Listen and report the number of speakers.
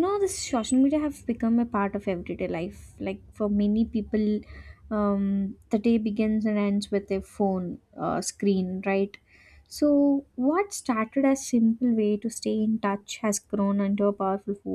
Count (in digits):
1